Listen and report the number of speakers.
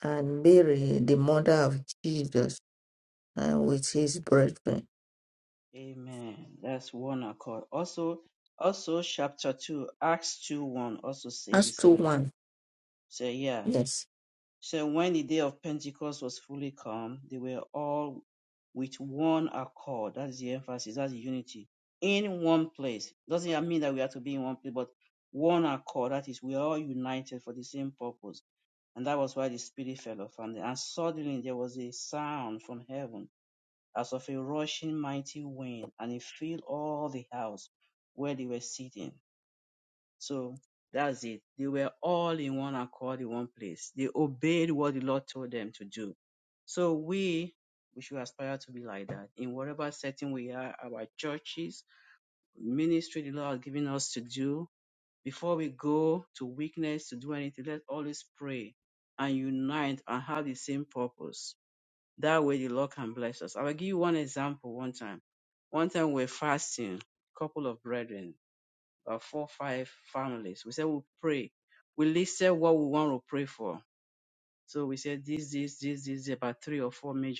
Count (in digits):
2